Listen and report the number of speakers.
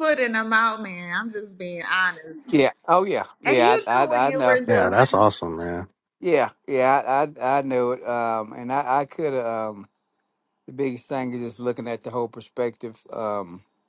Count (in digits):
3